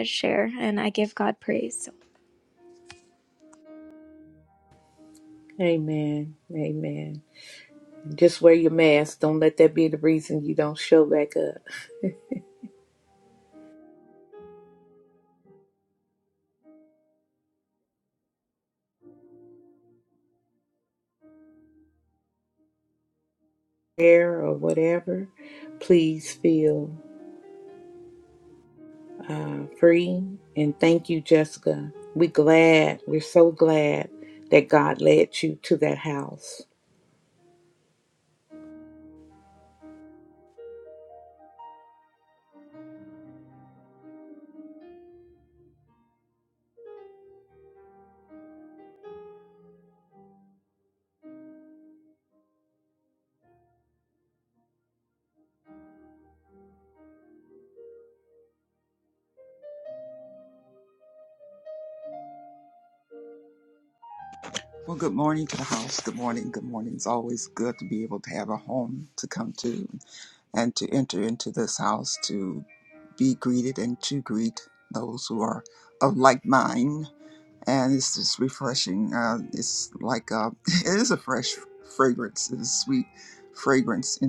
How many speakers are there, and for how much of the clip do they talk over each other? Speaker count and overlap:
3, no overlap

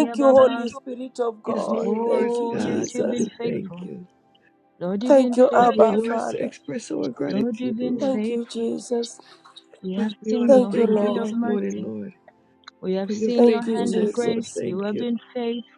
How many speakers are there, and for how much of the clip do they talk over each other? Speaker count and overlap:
3, about 63%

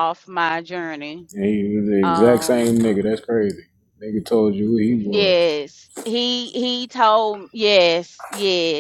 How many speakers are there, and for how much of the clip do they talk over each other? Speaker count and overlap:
2, about 11%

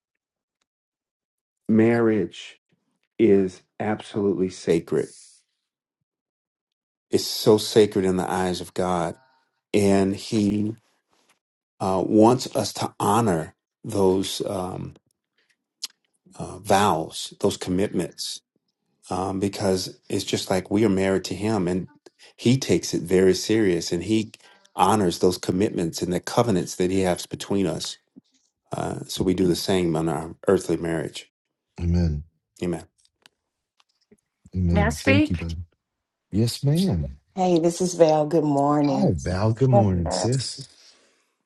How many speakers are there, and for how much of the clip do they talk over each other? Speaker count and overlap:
3, about 4%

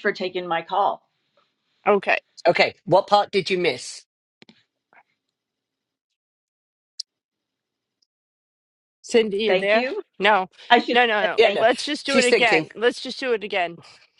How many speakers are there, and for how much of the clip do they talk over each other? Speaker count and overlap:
3, about 14%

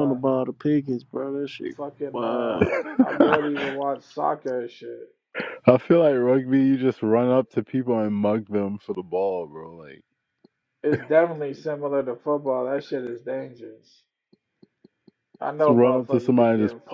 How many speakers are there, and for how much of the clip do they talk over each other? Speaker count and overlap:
3, about 12%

